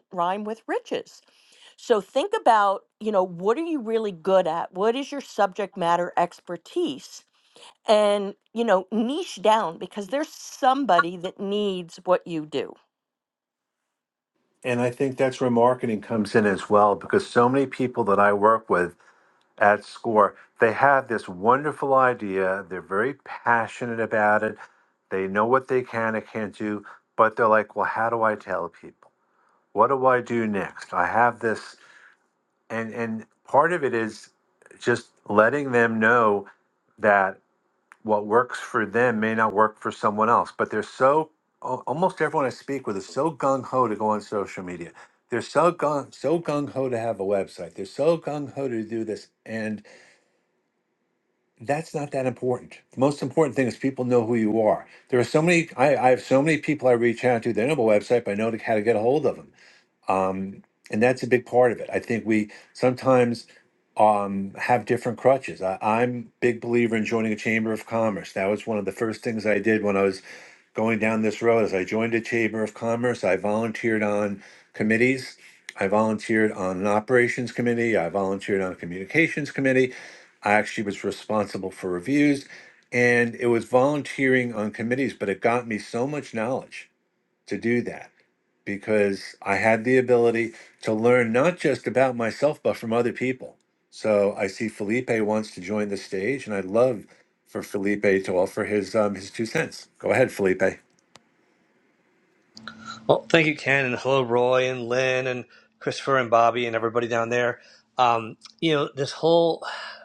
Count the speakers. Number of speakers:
three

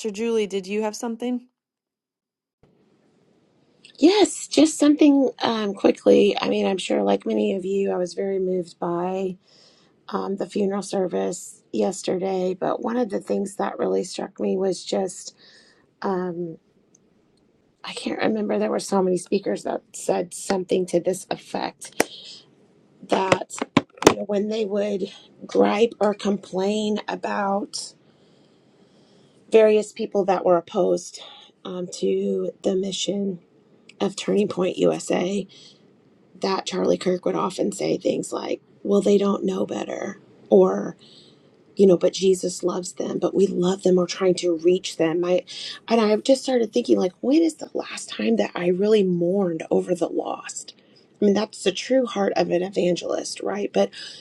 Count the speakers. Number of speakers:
two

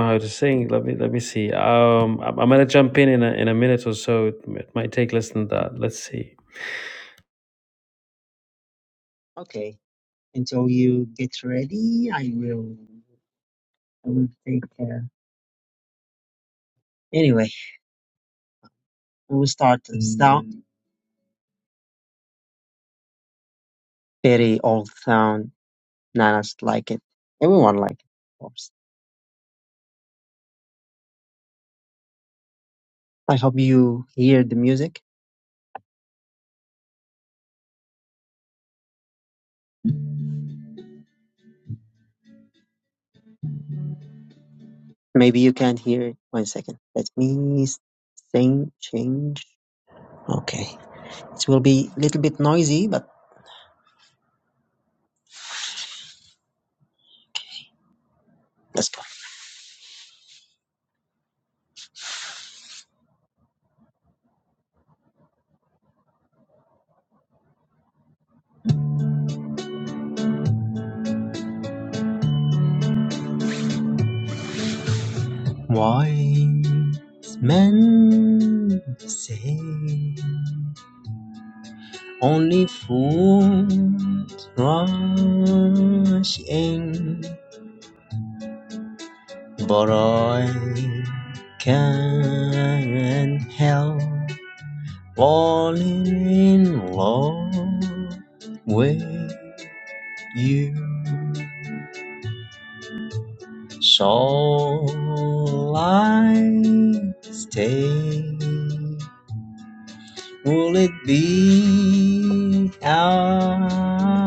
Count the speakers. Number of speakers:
two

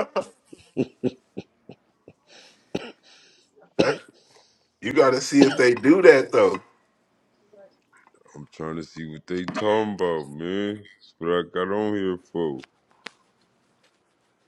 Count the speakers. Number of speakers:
two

